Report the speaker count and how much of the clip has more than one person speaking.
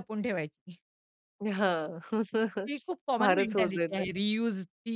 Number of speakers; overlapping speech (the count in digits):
2, about 18%